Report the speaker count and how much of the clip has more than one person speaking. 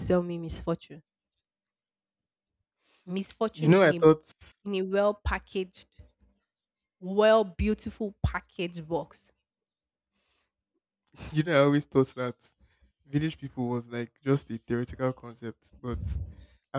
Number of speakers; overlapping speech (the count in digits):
2, about 3%